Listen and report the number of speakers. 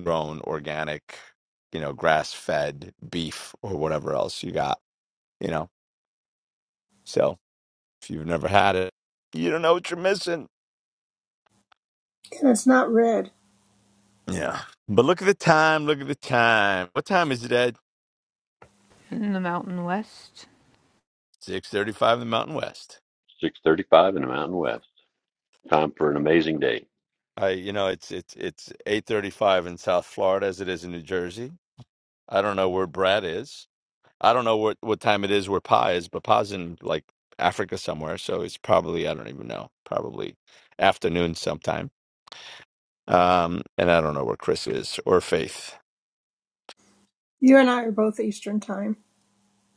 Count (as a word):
four